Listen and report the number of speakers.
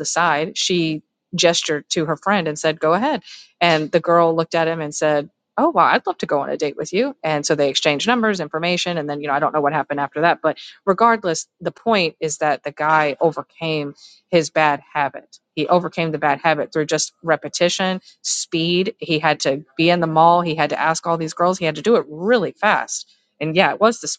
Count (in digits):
1